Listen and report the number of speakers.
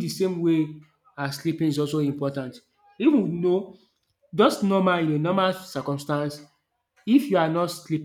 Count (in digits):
1